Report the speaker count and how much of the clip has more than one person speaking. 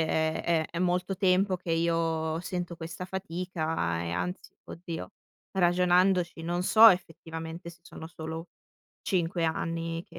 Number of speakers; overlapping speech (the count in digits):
1, no overlap